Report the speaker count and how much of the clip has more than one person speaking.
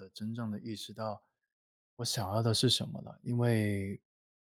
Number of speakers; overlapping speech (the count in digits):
1, no overlap